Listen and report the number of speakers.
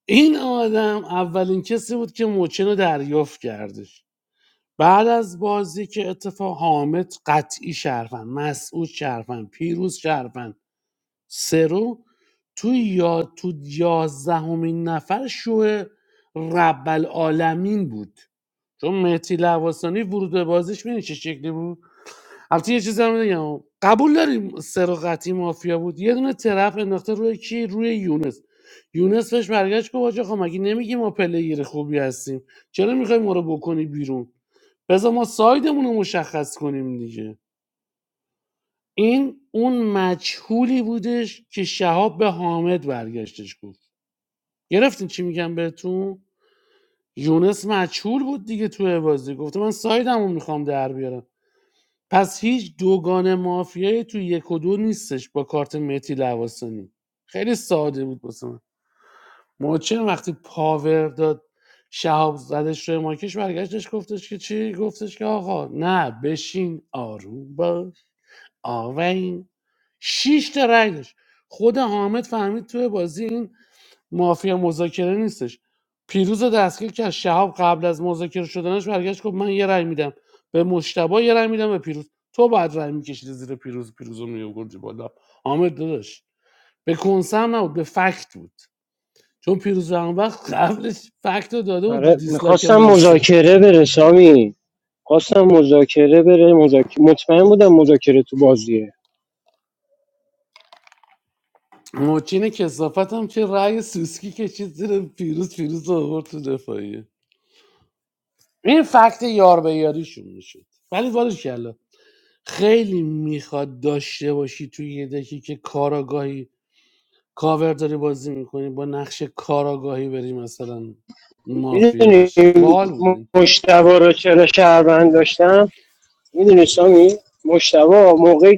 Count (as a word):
two